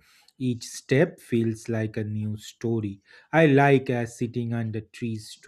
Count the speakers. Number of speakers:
one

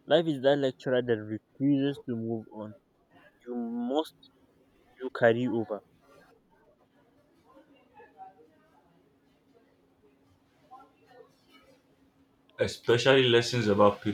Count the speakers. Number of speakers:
two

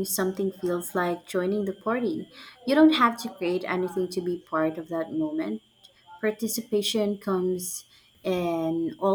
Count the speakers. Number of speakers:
one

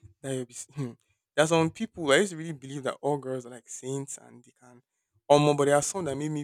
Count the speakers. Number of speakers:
one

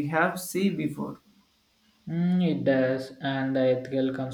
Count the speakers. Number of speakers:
two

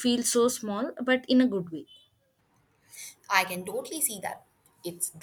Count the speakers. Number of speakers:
two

